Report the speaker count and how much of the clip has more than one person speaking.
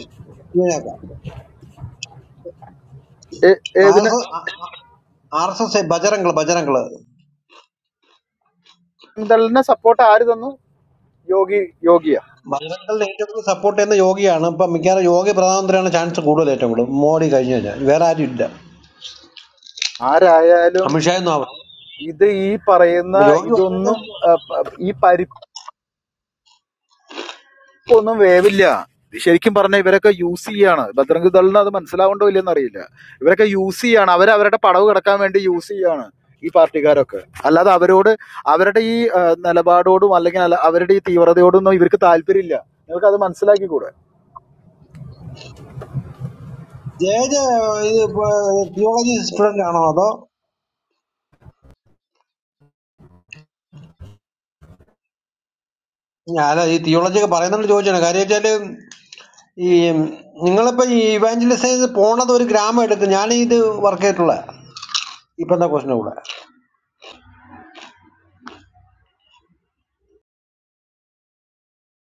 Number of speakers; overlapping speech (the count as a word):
two, about 2%